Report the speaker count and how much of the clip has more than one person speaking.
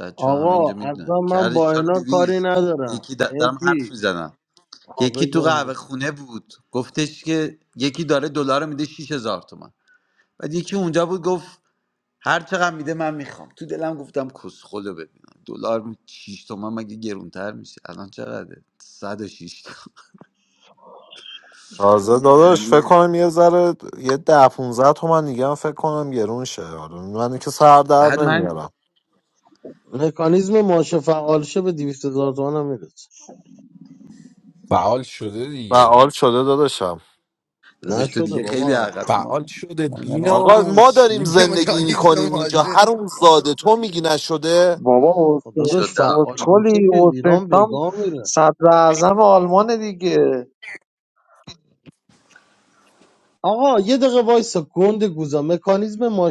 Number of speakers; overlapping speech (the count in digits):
5, about 19%